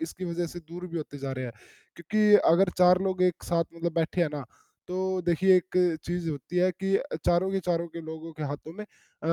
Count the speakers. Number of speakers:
1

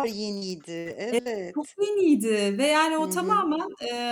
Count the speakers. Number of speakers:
2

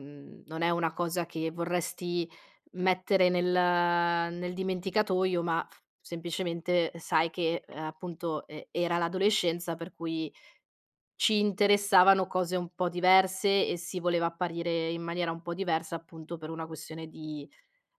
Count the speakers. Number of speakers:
1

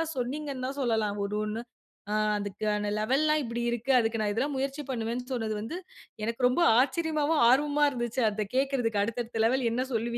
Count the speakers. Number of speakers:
1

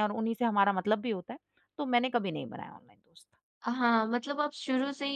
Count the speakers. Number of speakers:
2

